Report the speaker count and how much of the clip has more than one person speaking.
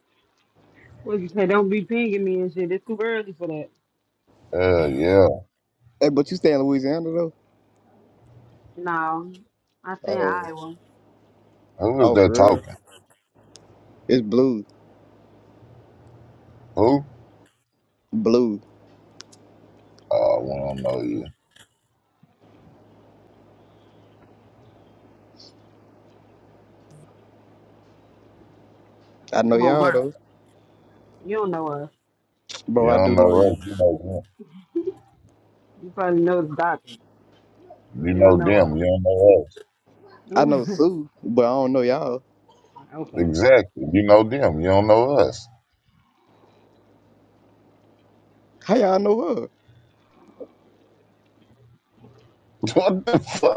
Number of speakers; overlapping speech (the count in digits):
3, about 6%